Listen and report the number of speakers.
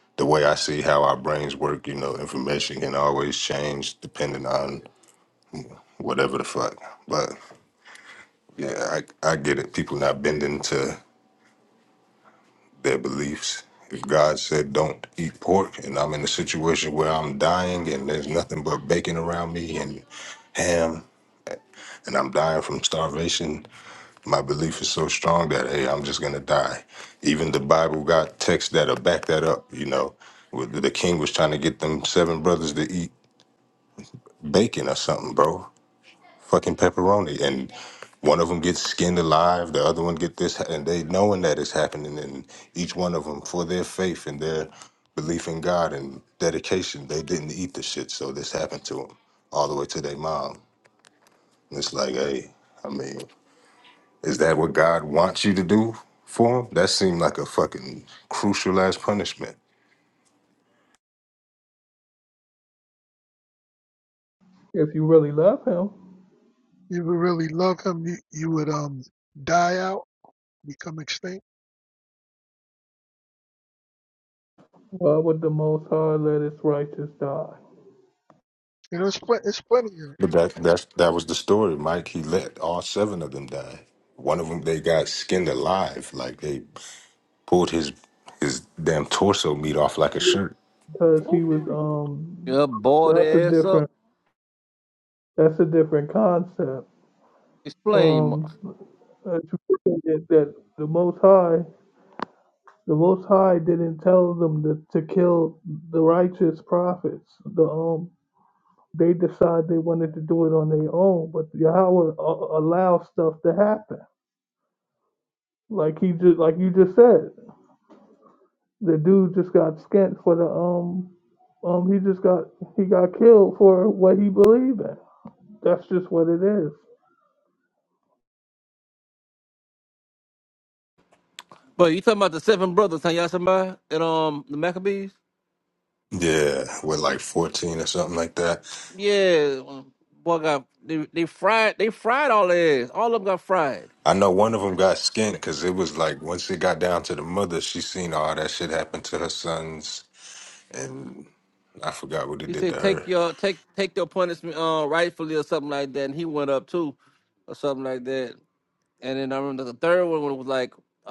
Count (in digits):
4